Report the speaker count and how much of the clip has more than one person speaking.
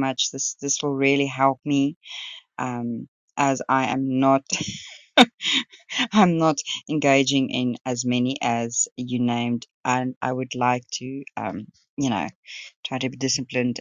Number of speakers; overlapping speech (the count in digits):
1, no overlap